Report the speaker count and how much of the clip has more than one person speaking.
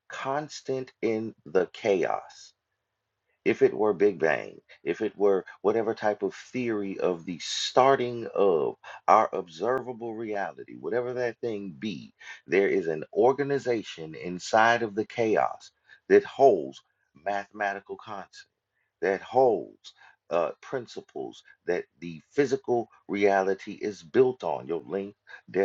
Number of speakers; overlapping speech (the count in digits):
1, no overlap